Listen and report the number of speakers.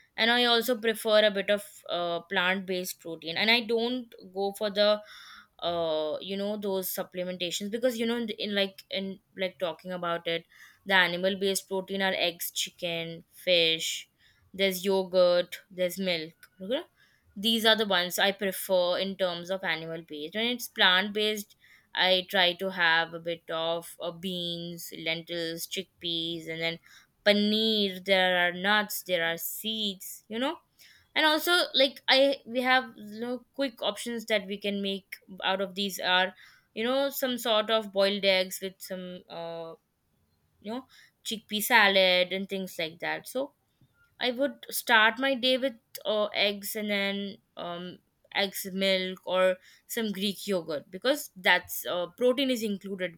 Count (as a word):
one